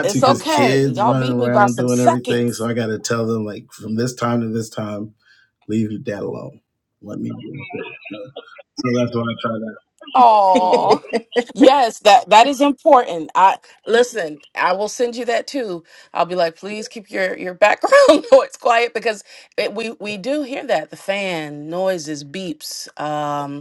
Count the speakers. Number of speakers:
2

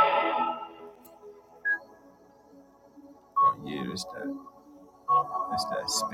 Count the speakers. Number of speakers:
1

